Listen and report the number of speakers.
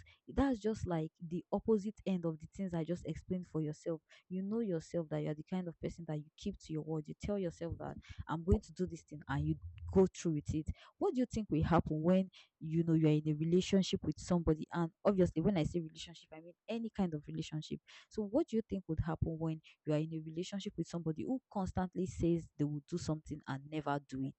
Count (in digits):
1